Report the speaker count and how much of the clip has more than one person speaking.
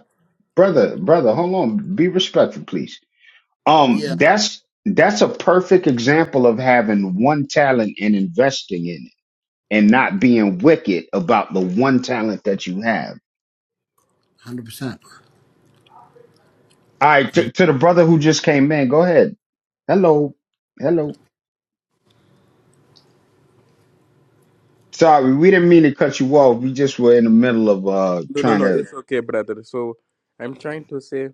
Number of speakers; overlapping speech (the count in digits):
3, about 3%